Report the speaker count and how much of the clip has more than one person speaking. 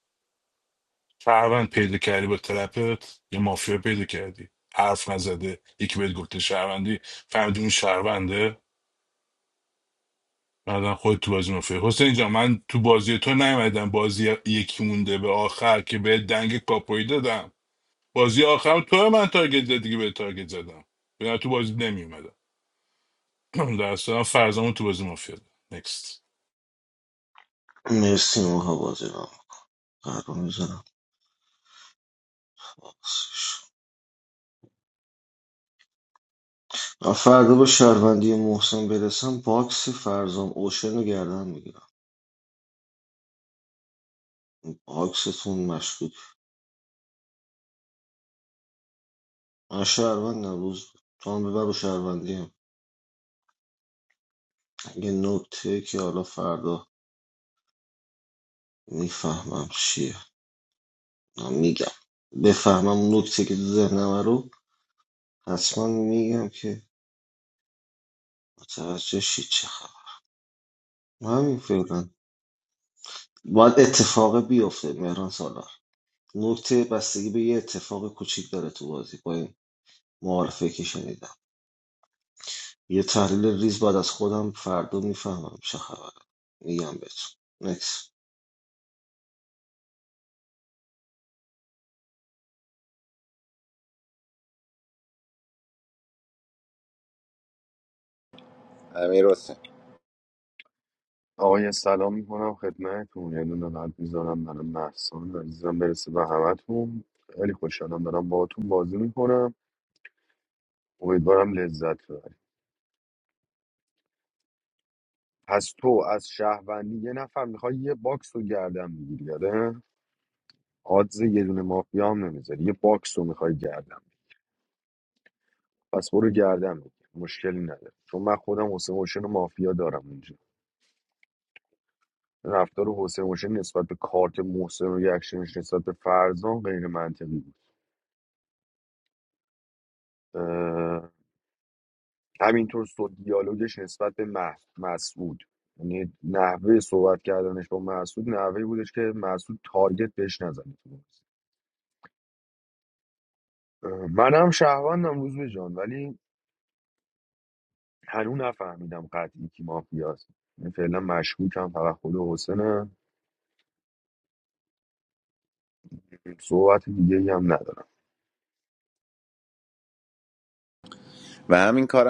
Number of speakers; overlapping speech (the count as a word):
four, no overlap